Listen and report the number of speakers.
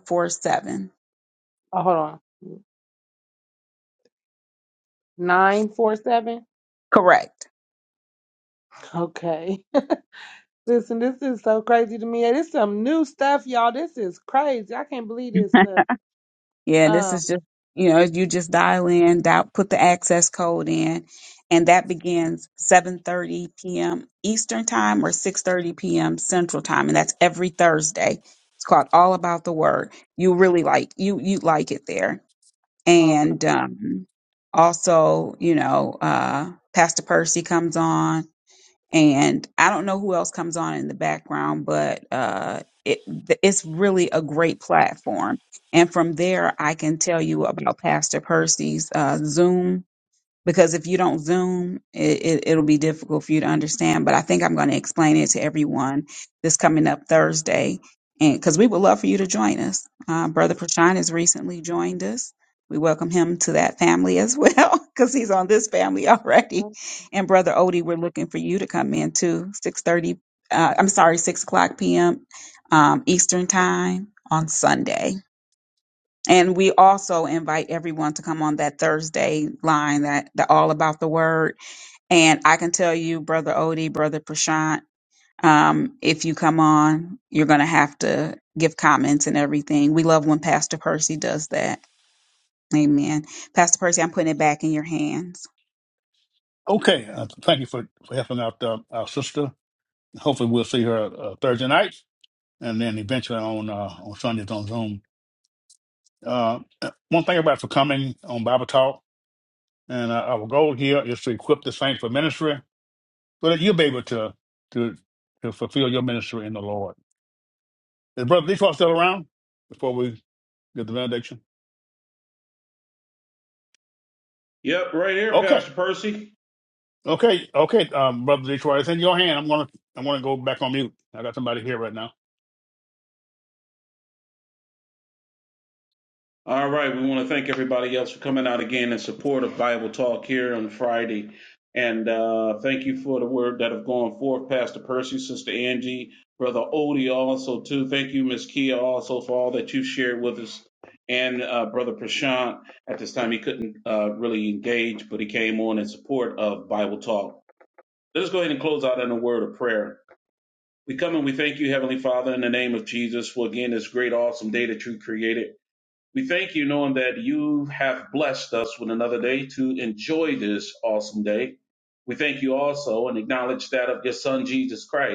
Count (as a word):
four